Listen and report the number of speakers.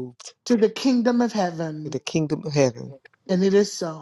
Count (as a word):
two